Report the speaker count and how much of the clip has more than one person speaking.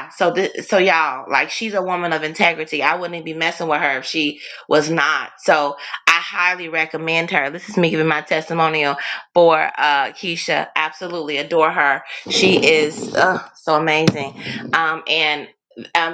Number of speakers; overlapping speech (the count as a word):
one, no overlap